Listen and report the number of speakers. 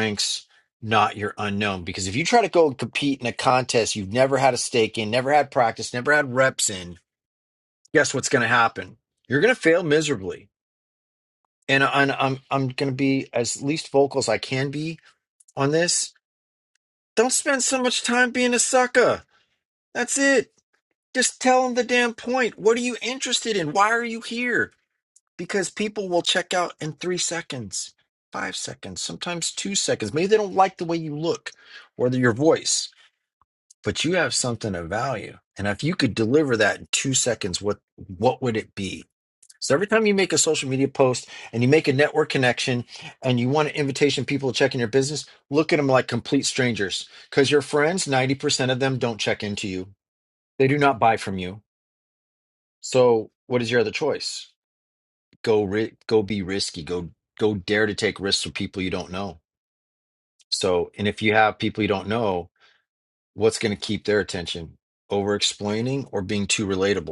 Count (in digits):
1